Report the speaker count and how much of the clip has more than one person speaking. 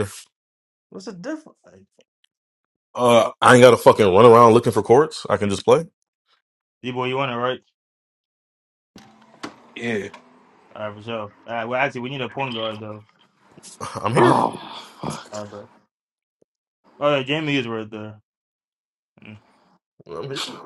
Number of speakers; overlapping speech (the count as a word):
three, about 1%